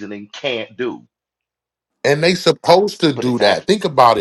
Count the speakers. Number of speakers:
2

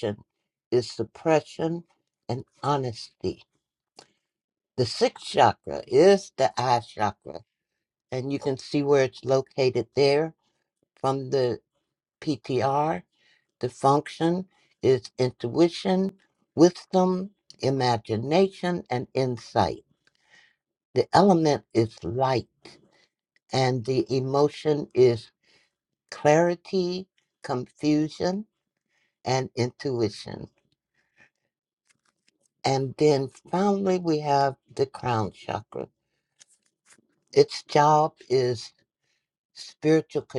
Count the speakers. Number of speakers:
1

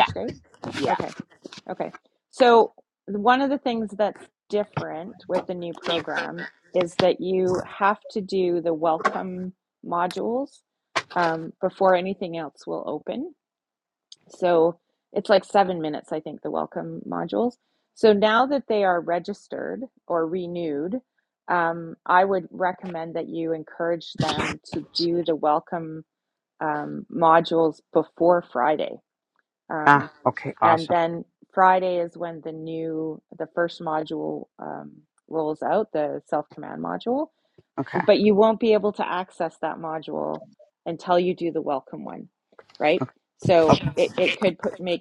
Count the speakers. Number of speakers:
2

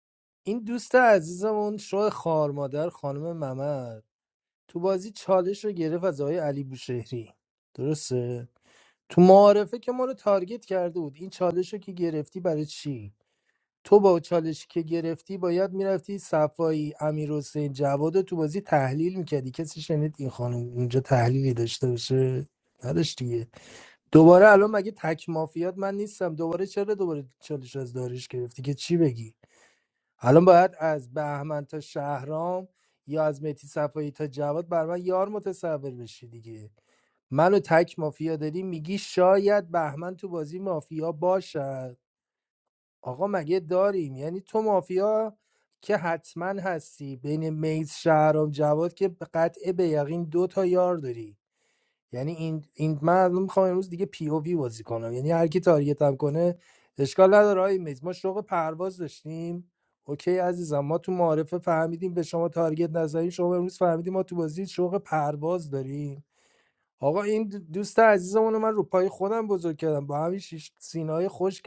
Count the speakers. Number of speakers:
1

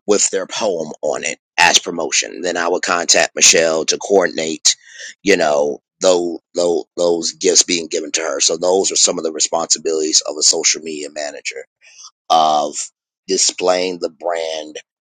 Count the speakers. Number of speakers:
1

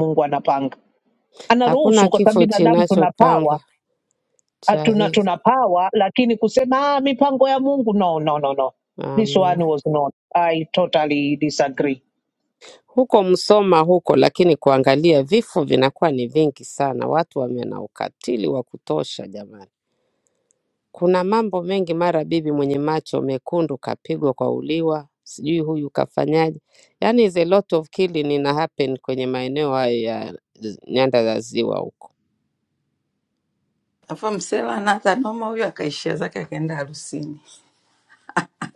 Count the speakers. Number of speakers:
3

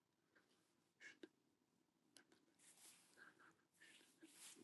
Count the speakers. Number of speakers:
0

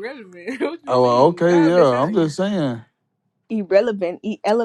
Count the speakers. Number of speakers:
3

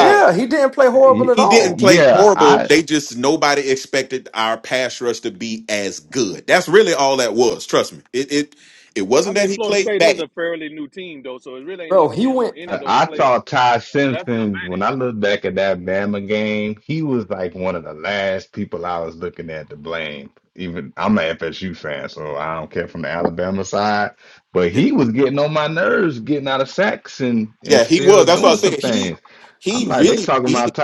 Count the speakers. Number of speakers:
4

